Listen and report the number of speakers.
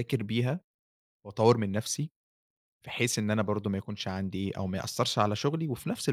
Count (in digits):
1